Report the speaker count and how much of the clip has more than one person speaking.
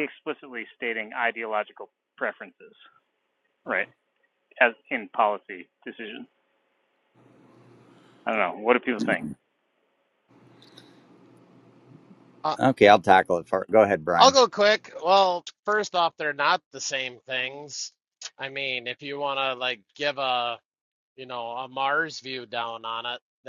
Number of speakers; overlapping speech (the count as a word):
three, about 1%